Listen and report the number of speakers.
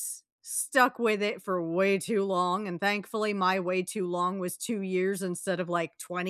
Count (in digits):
1